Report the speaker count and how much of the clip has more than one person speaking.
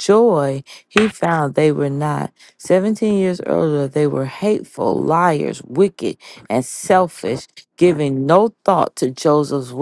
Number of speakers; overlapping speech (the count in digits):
1, no overlap